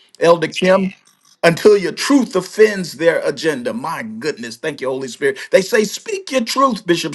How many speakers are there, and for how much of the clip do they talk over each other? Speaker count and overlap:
1, no overlap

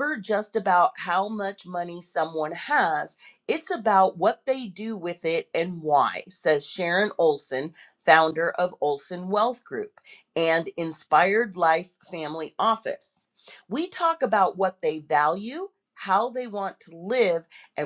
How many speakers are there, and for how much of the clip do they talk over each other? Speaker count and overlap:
1, no overlap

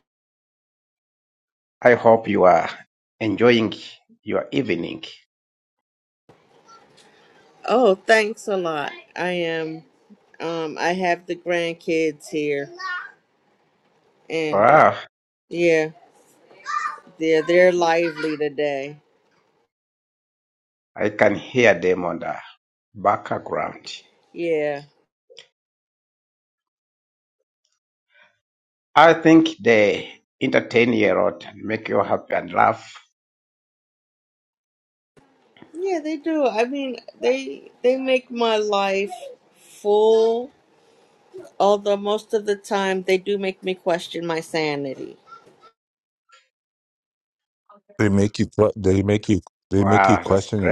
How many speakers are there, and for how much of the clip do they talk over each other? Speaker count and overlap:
3, about 2%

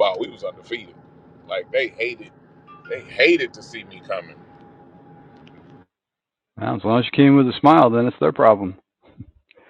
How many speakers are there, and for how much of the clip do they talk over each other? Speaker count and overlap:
2, no overlap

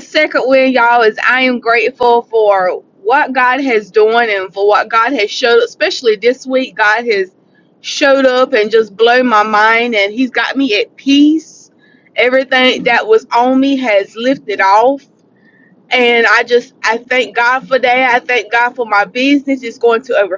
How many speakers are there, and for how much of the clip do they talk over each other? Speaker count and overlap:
1, no overlap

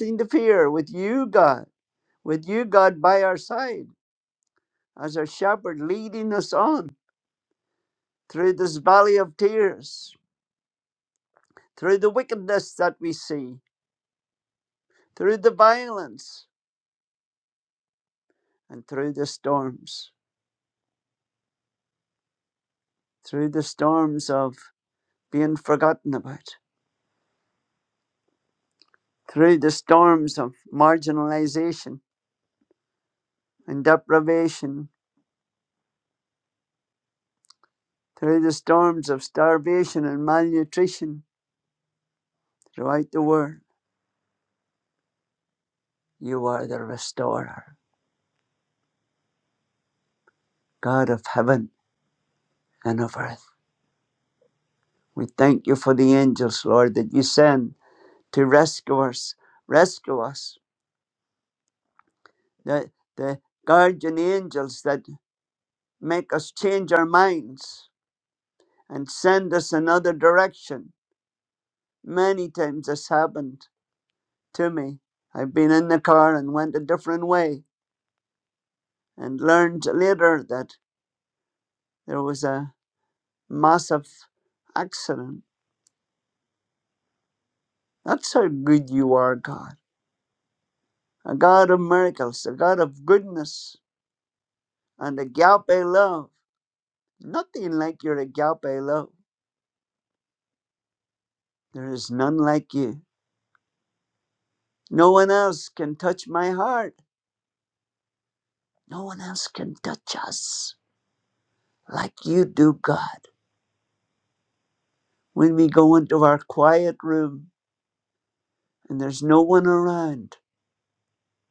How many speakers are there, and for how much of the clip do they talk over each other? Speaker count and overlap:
1, no overlap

